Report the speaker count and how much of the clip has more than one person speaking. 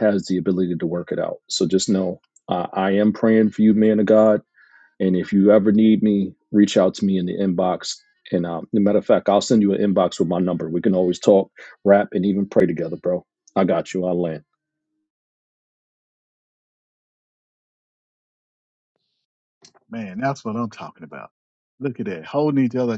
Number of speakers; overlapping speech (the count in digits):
2, no overlap